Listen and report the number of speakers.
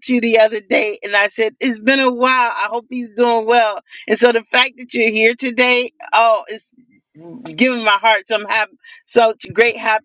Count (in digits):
1